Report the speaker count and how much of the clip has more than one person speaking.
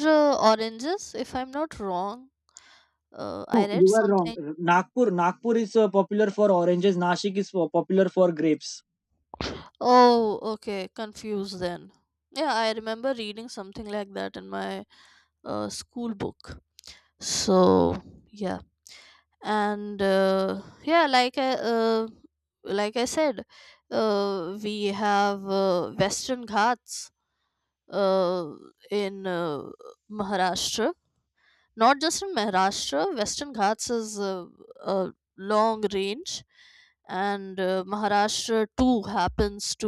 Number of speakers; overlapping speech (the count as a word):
two, about 2%